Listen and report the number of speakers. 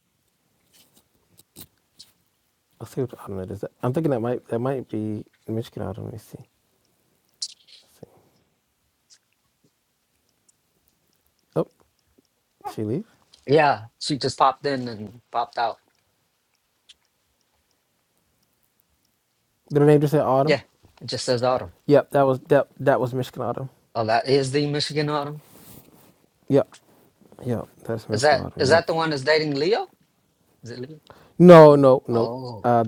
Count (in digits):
2